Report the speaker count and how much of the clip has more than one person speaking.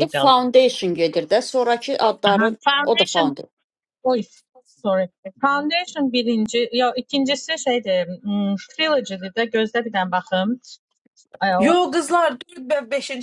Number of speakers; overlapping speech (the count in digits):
3, about 12%